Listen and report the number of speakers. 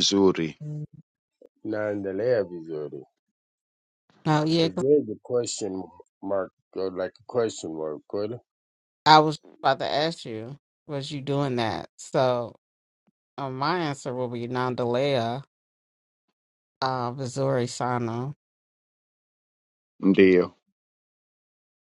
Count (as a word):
three